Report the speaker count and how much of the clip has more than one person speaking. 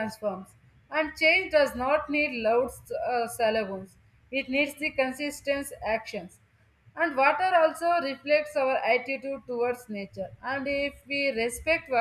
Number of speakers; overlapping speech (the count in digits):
1, no overlap